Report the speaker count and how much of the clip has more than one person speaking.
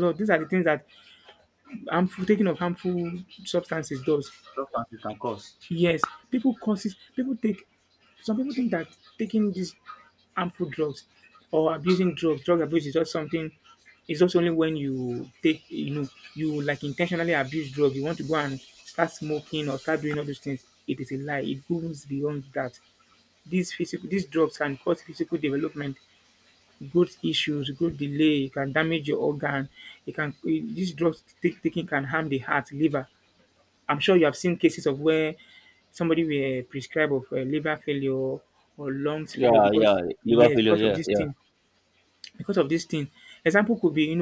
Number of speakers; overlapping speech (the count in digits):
2, about 4%